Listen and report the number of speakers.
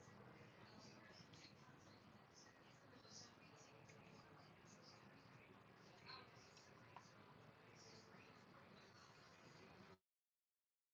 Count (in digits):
0